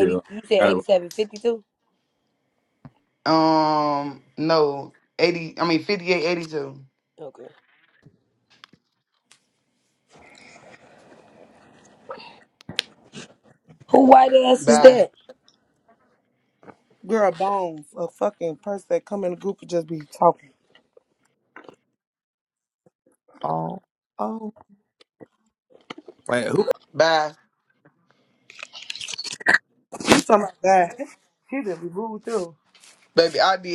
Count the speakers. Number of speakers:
4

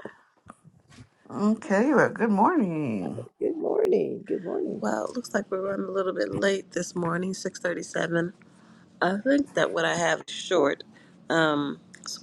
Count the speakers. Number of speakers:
3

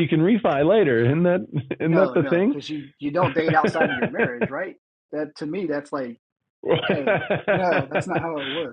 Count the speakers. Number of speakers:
2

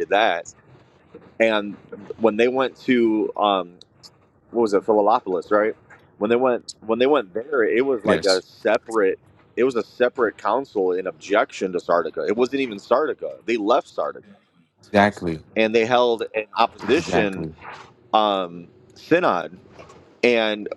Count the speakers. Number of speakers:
2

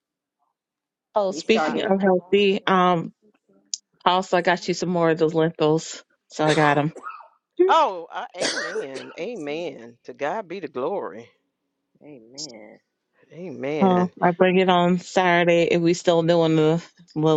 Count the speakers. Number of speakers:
3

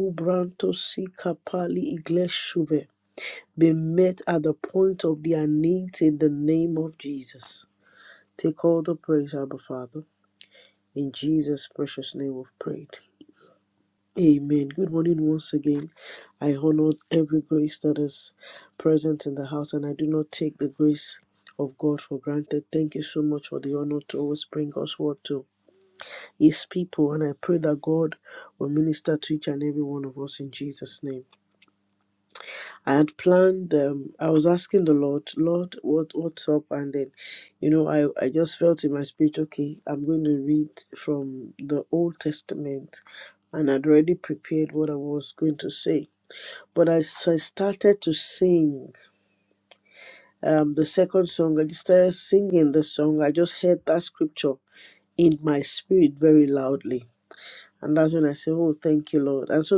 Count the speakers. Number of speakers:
1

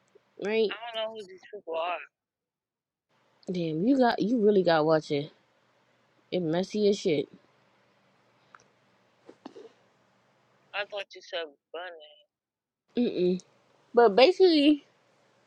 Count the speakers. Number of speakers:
2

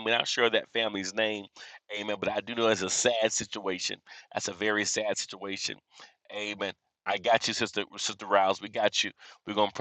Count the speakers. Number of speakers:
1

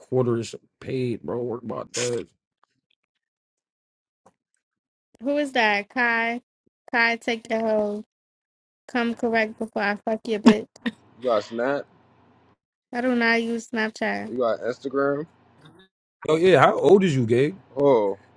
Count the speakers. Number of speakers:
3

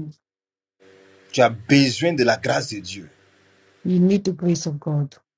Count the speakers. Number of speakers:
2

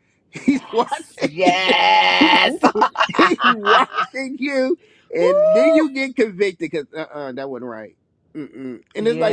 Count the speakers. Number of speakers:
2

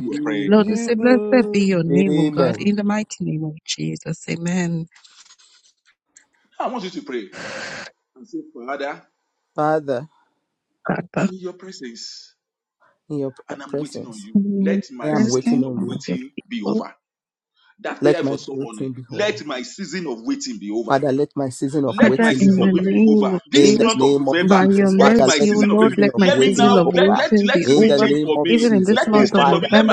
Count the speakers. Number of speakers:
3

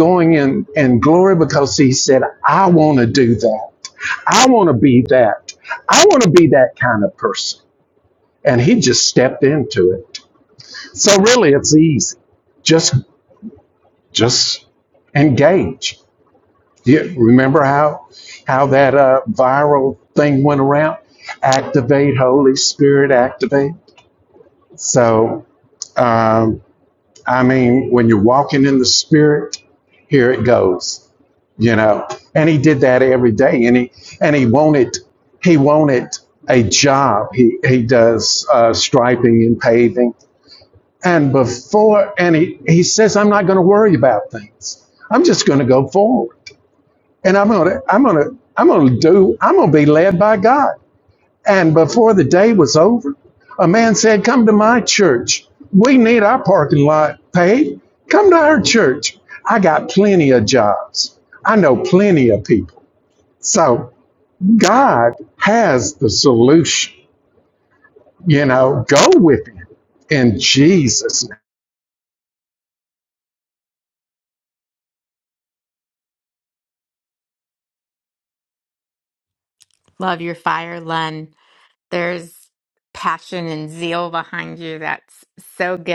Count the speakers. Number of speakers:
2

